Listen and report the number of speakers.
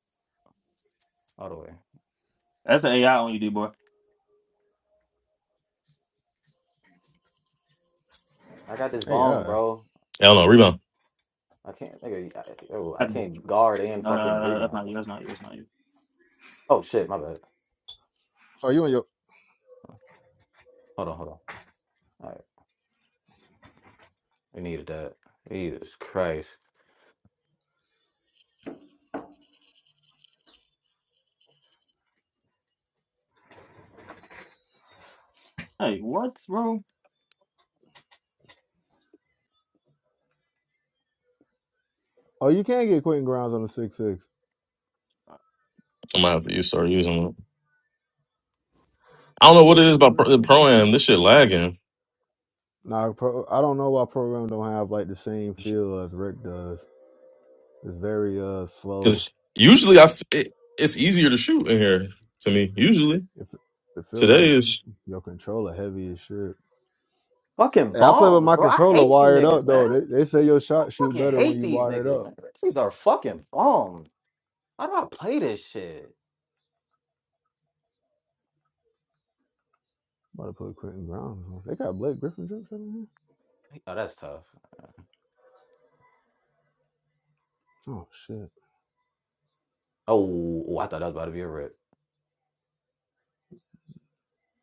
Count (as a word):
four